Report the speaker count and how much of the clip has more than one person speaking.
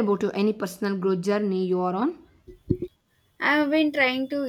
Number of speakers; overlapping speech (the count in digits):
2, no overlap